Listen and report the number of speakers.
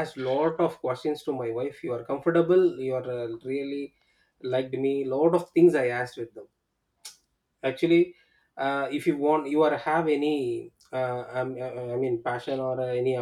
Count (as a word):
one